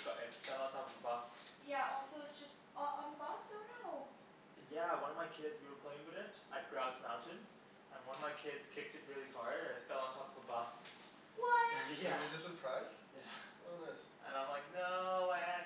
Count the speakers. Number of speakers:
3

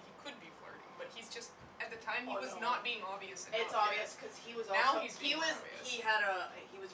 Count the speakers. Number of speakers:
2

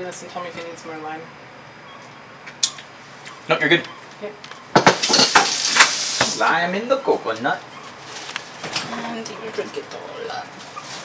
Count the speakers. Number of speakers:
3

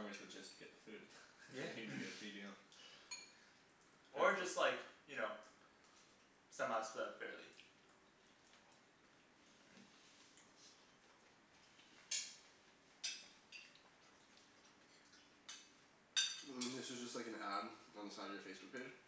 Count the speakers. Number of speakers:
3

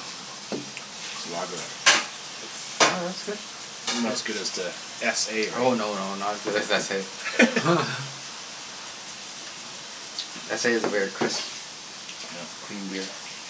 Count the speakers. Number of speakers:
2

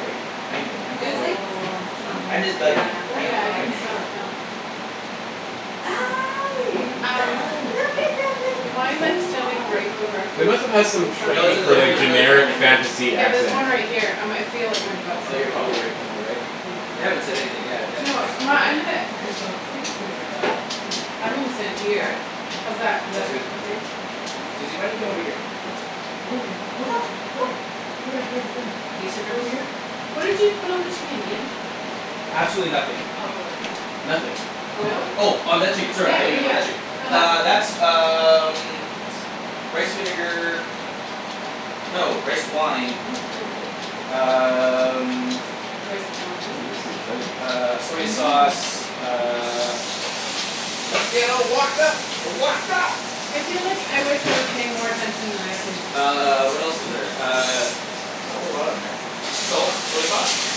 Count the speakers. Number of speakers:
4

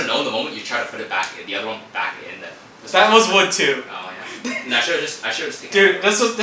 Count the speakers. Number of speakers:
2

